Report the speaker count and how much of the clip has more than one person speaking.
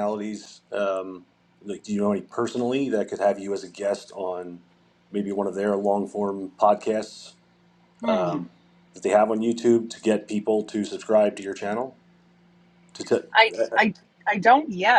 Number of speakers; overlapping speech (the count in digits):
2, about 4%